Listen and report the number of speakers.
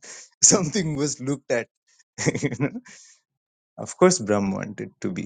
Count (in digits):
1